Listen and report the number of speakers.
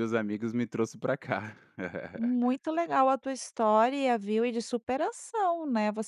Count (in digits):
2